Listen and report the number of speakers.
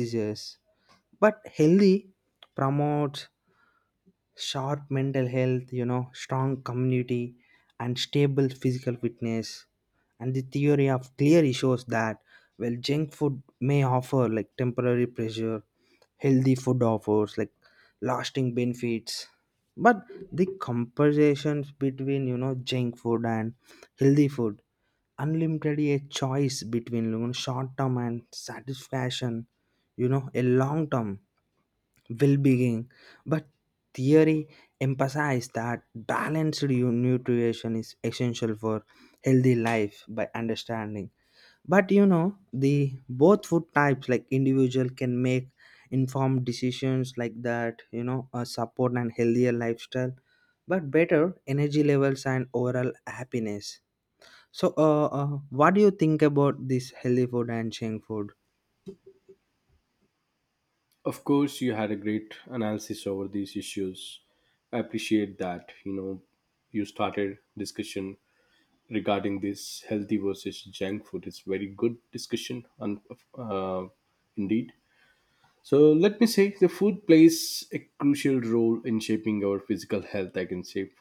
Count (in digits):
2